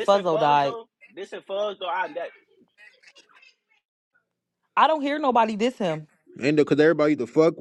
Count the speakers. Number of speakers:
3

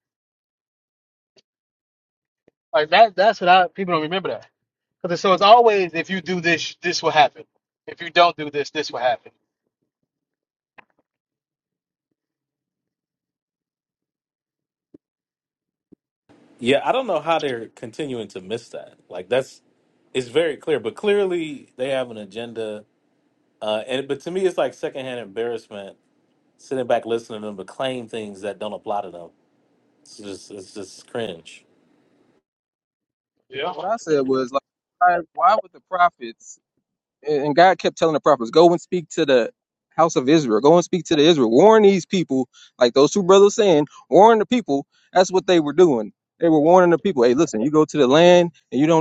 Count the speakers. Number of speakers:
3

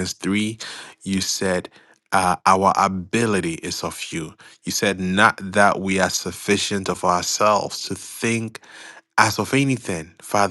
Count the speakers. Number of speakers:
1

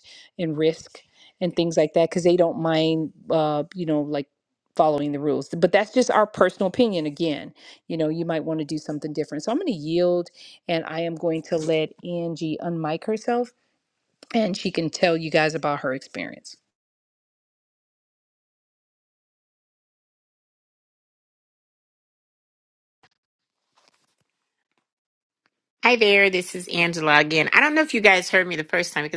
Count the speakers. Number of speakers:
2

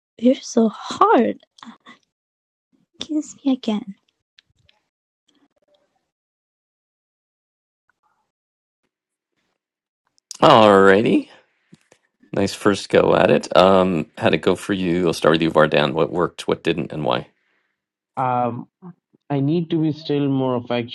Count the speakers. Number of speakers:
3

